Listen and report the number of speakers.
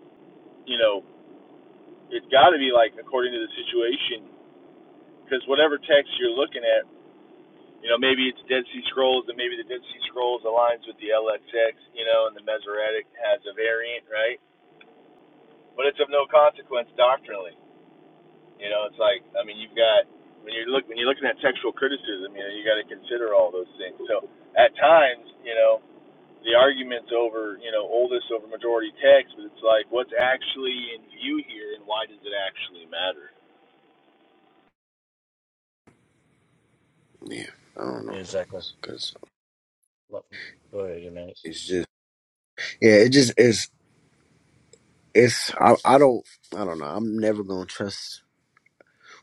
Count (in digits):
3